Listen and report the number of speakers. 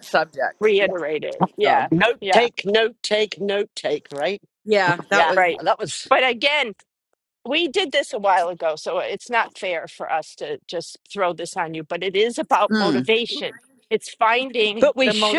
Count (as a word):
three